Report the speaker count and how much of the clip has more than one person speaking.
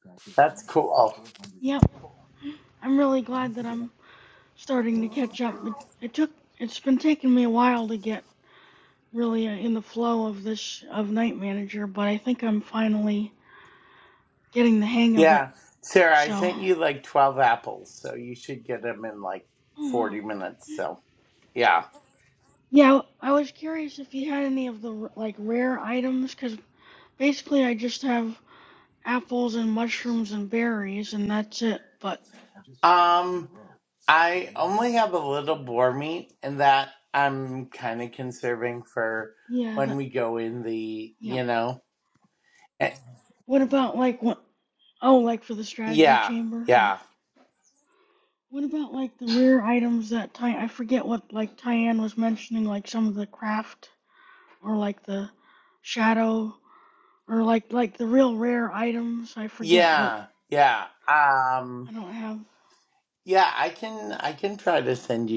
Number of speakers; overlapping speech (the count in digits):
2, about 4%